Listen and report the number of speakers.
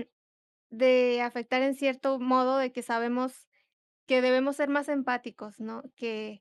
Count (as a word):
one